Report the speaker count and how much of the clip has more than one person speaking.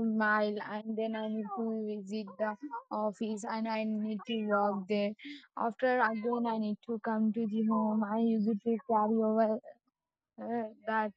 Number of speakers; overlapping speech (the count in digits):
1, no overlap